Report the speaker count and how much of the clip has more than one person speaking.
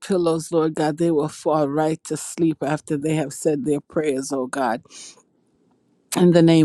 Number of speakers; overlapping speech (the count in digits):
1, no overlap